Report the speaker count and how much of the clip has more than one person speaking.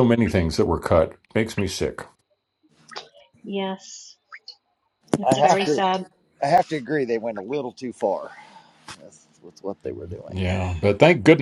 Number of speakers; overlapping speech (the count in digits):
3, about 6%